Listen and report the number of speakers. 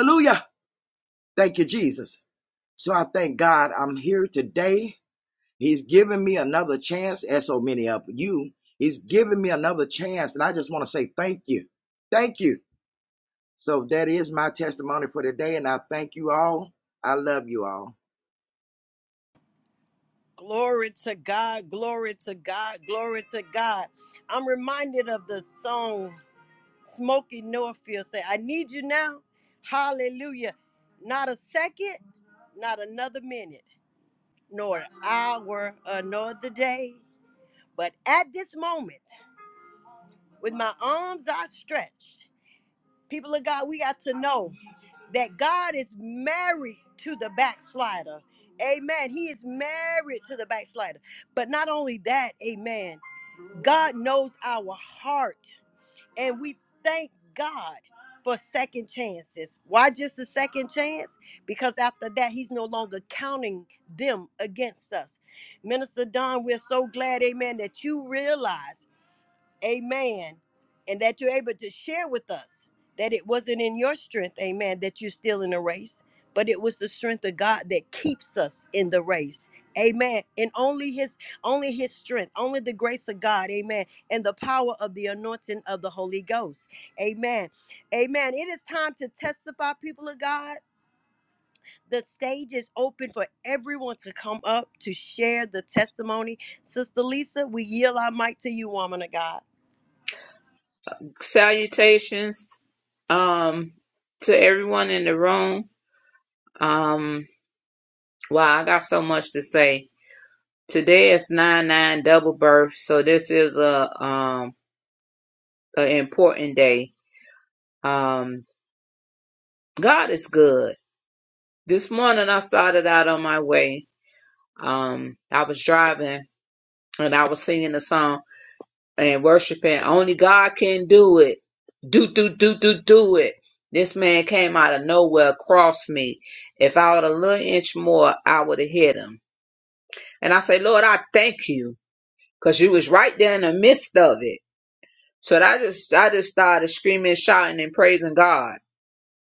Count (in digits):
3